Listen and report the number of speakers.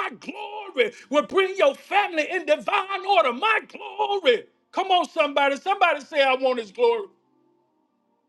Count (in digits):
1